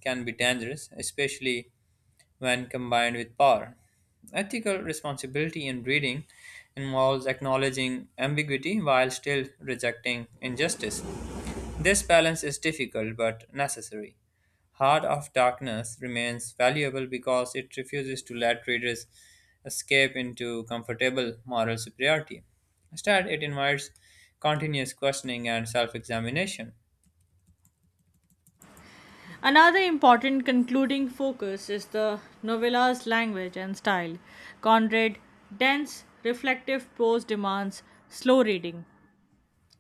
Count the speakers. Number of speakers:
2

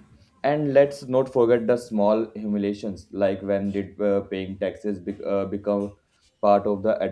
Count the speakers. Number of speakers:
1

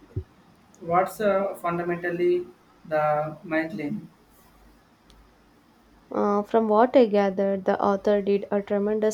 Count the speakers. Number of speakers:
2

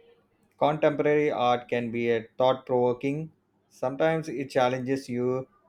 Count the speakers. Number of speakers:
1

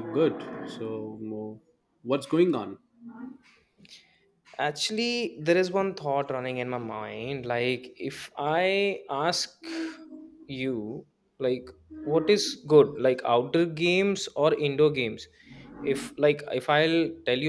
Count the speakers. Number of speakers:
2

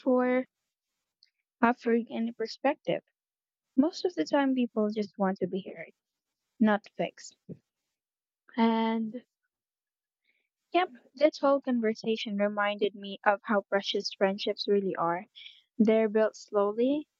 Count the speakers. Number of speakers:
1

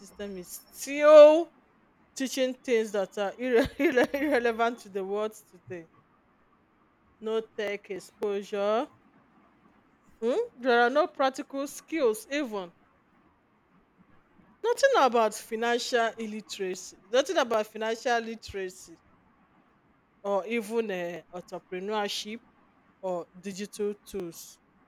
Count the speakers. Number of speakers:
1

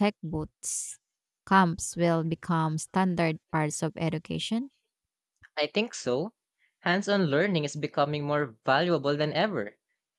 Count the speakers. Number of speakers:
2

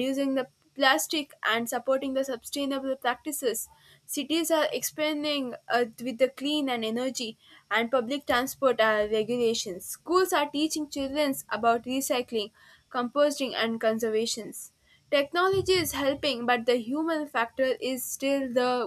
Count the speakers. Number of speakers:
1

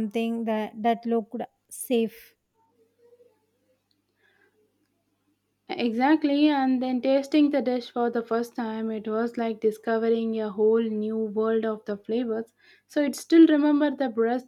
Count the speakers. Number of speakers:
2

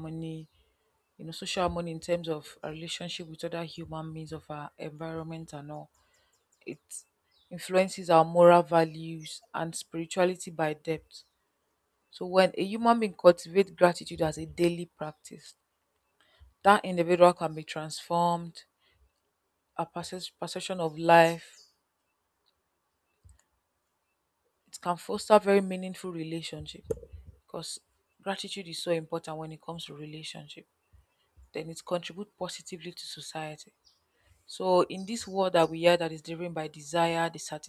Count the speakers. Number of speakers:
1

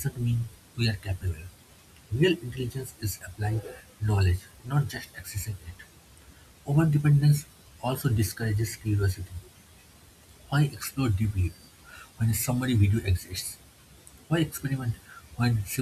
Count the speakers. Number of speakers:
1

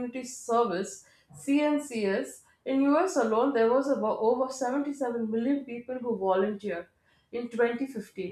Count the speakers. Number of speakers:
1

